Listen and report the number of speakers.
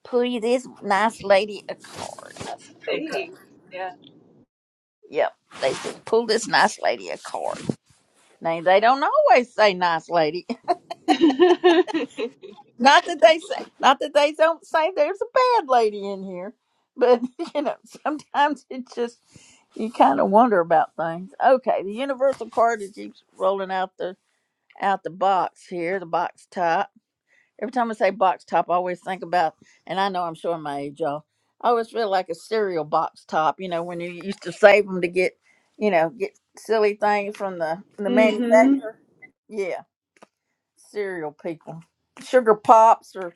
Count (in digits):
2